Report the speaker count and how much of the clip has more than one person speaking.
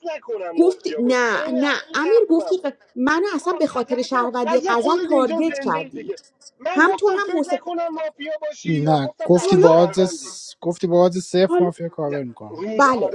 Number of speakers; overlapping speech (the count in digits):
3, about 62%